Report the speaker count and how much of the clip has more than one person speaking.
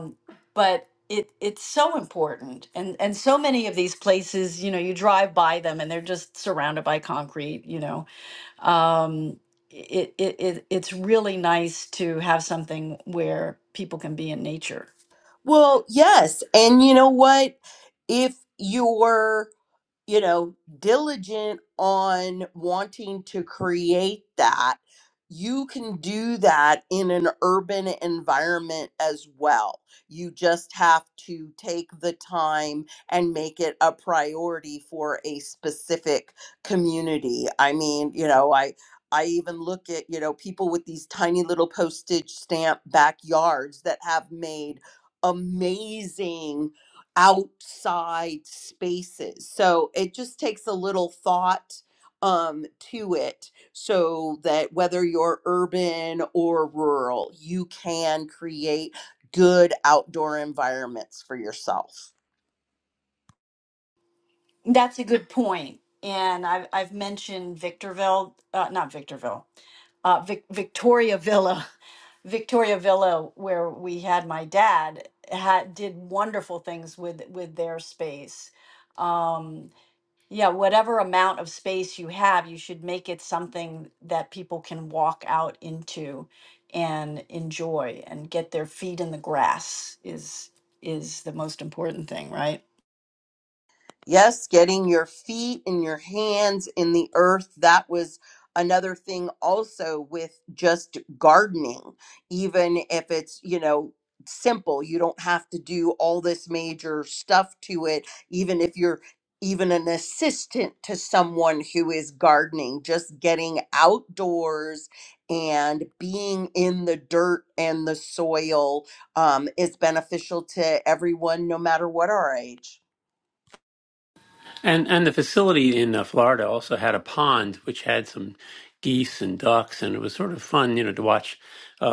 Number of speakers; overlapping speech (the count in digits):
3, no overlap